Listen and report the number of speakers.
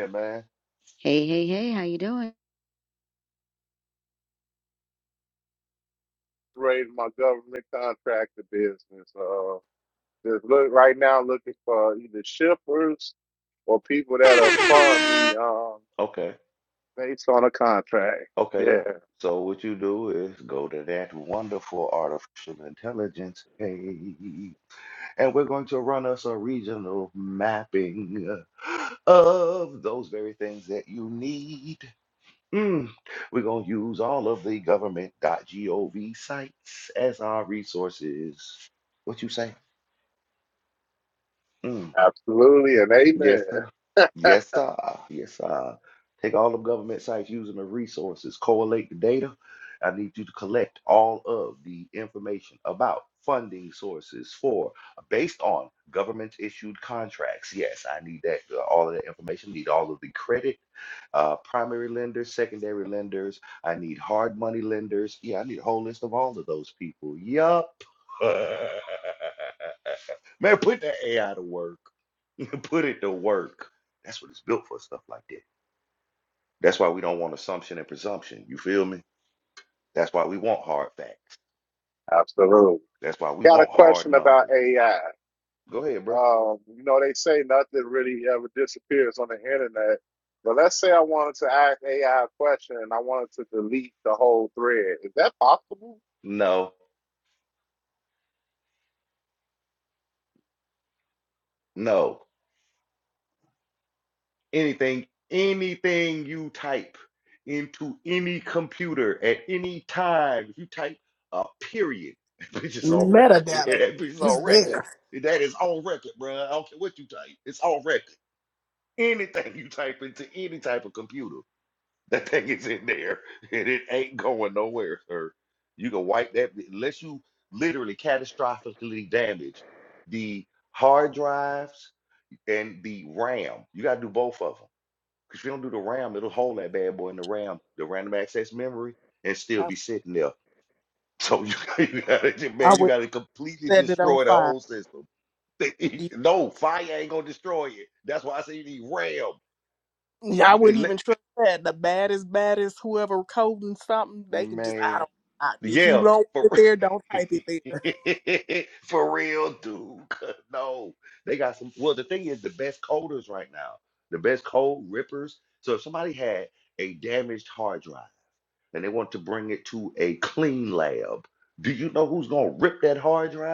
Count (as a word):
four